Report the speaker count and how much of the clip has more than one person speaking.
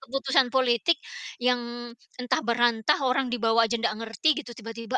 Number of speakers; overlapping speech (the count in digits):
1, no overlap